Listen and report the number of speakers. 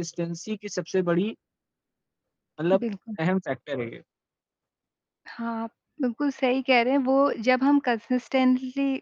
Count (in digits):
2